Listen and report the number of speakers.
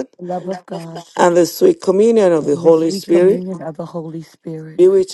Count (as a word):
two